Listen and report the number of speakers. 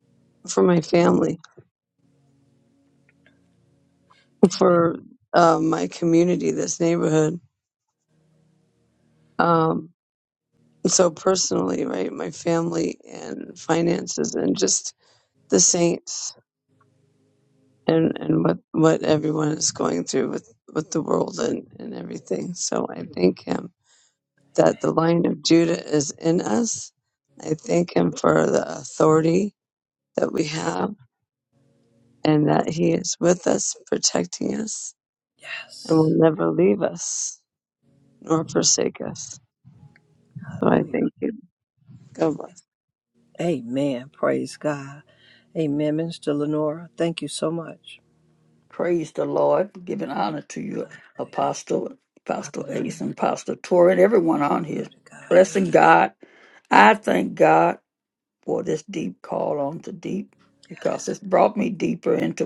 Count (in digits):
3